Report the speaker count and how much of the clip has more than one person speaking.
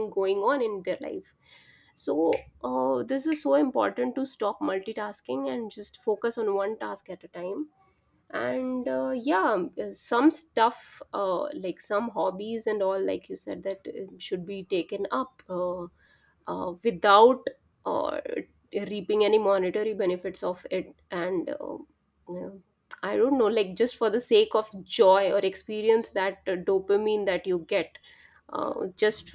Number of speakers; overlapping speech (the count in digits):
1, no overlap